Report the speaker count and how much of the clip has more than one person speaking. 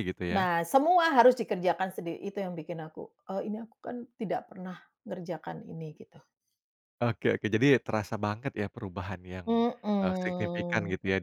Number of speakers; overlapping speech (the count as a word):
two, about 6%